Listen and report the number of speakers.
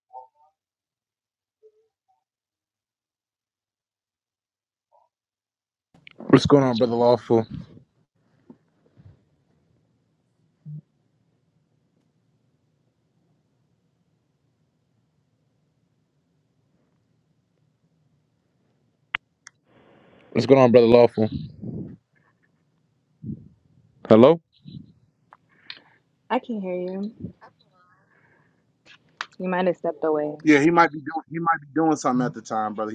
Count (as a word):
three